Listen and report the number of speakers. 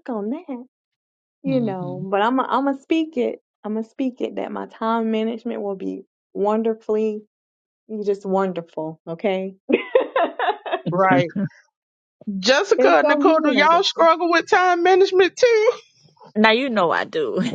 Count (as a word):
three